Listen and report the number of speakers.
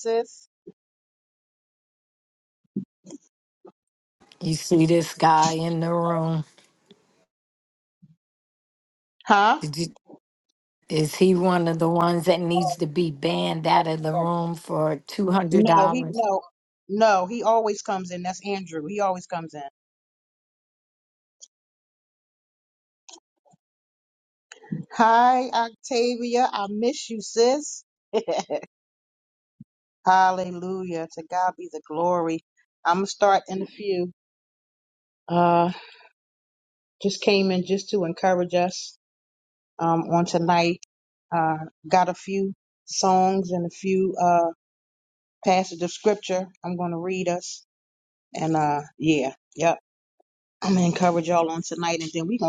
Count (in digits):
2